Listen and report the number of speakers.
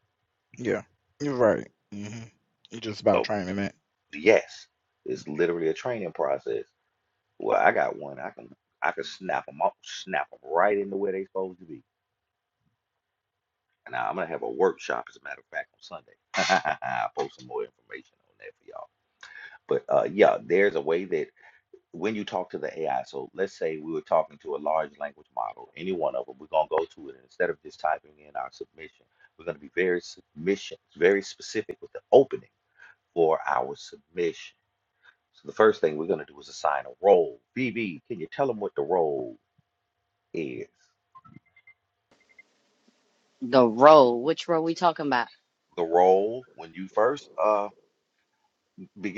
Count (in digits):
3